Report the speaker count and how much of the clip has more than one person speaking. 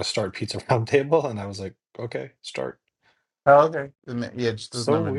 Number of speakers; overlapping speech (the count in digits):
2, about 9%